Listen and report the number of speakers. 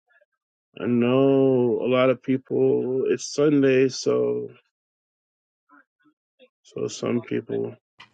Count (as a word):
one